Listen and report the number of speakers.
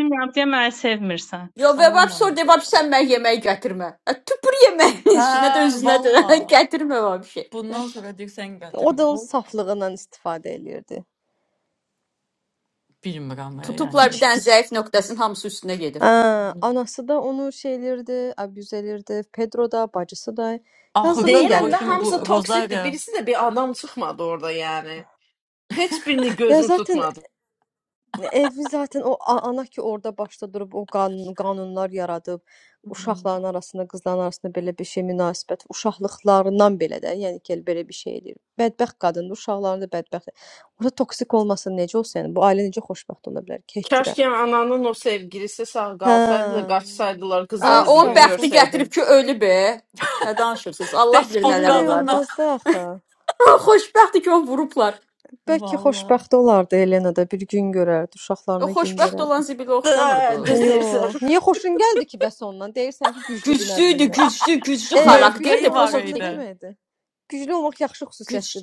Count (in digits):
5